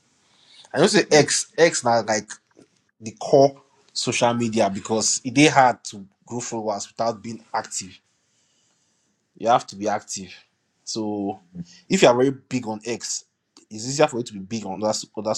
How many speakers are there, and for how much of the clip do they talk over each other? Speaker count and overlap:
1, no overlap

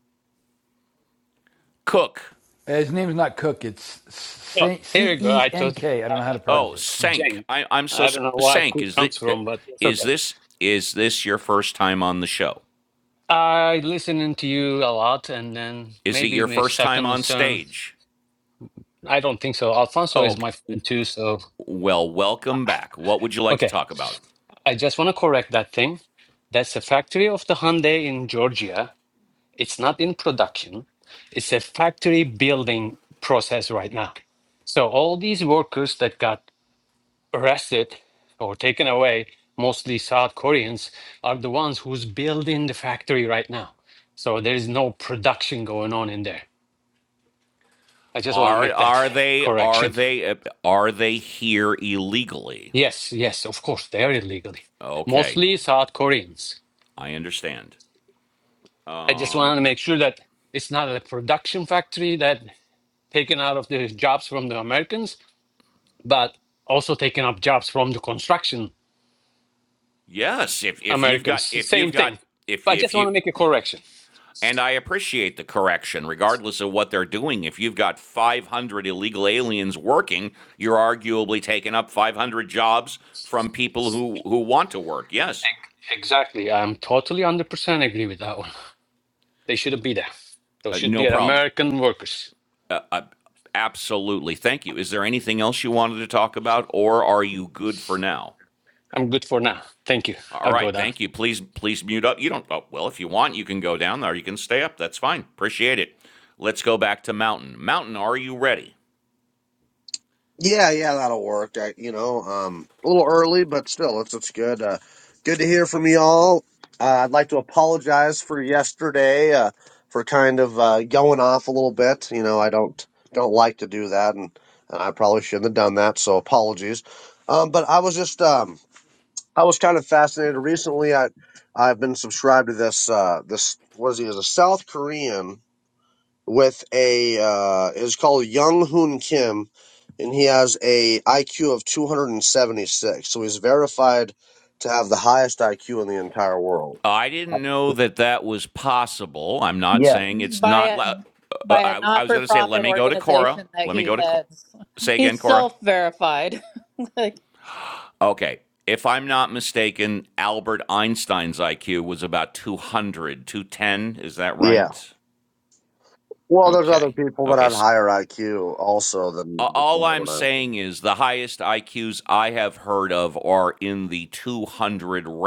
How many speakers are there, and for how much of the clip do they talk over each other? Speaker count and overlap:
5, about 10%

